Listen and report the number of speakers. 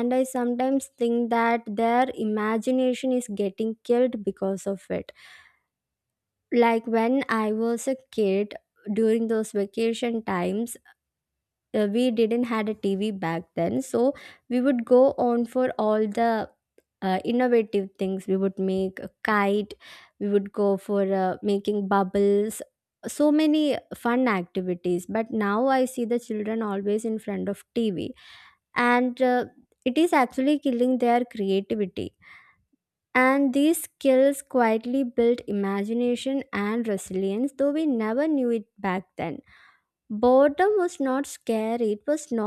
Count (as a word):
one